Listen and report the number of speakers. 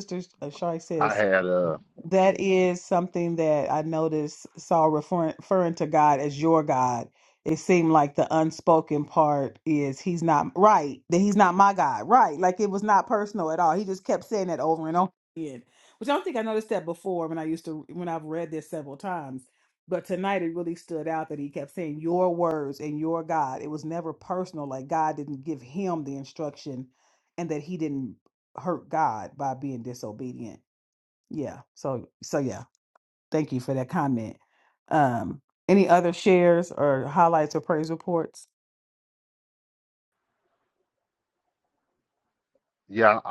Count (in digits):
2